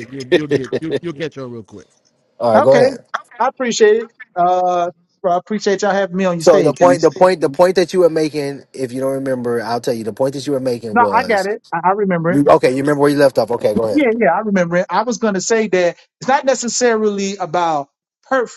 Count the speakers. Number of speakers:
three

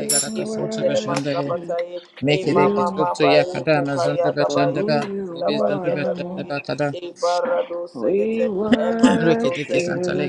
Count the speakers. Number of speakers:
three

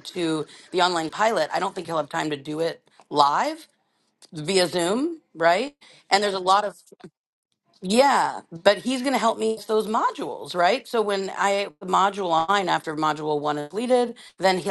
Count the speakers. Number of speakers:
one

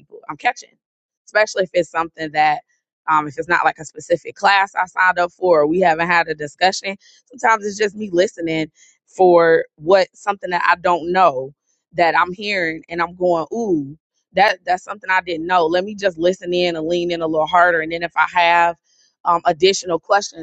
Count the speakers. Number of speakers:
one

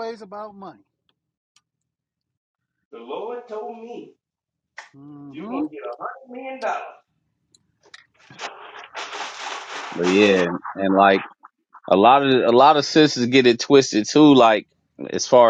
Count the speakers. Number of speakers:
three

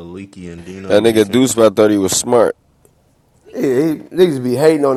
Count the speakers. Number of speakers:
three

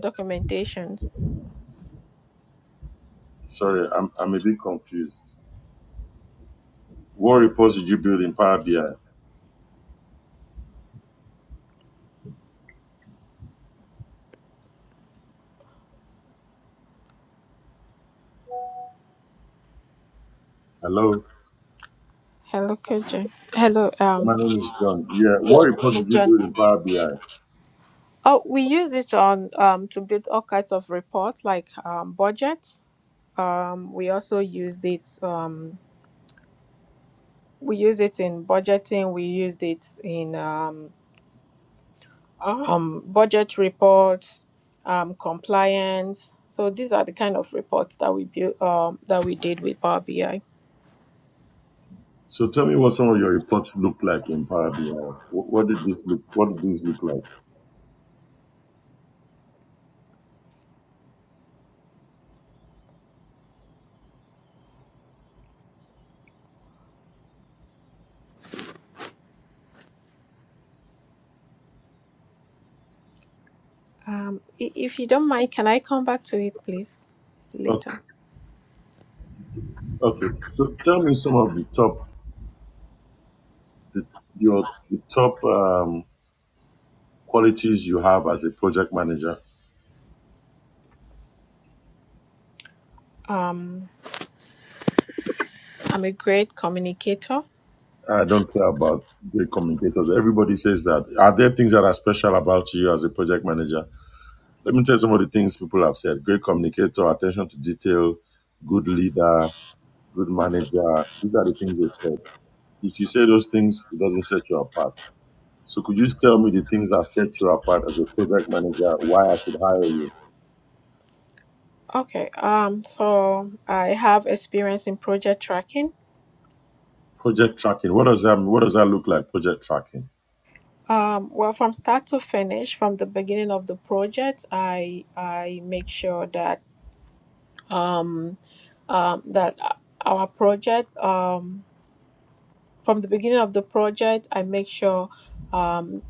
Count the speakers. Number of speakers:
two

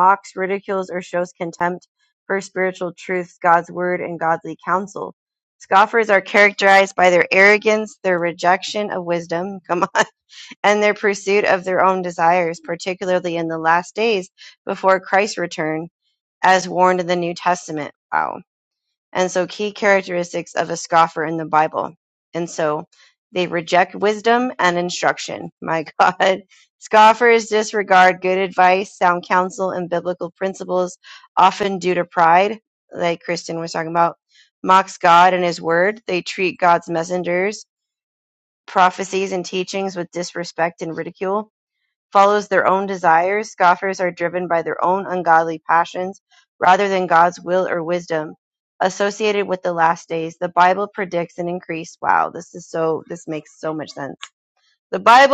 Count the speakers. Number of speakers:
one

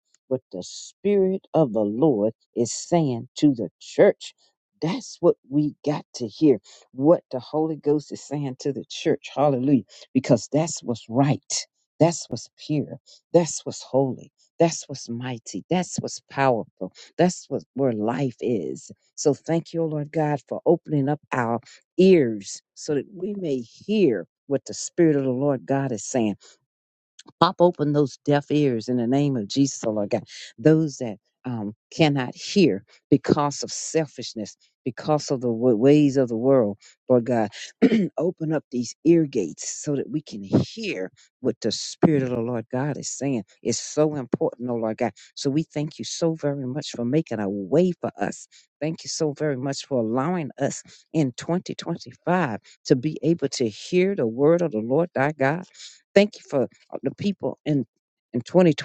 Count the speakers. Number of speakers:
one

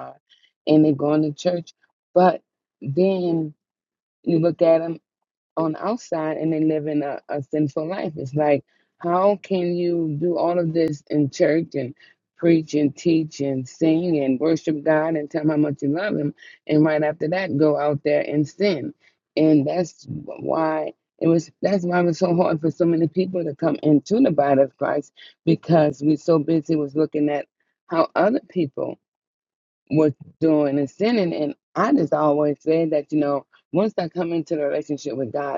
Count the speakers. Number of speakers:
one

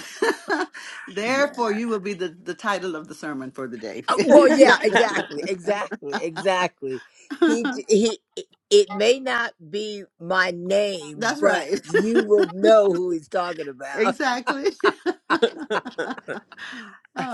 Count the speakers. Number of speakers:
two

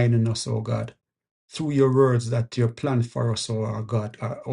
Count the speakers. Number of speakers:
one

